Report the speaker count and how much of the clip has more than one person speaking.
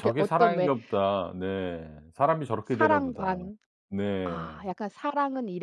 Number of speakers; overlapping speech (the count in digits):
2, about 30%